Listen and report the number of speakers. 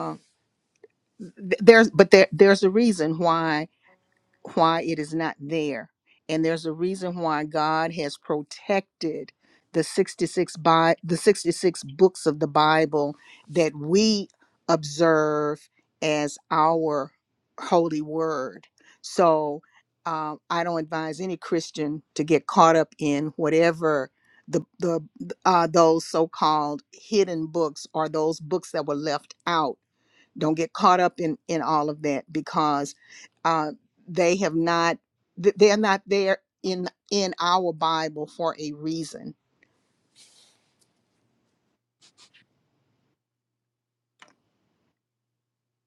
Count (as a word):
one